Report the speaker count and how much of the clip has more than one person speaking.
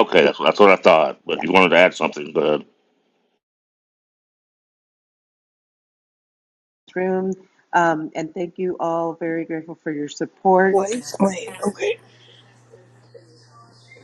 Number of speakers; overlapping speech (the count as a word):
three, about 1%